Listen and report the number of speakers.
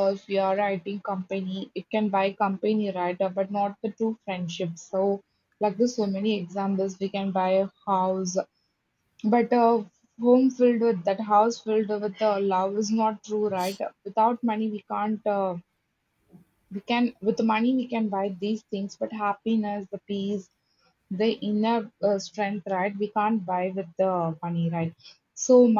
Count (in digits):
1